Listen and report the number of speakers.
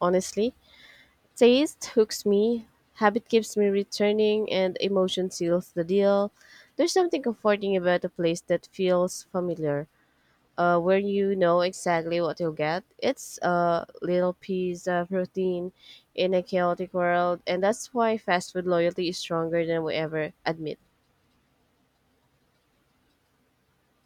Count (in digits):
1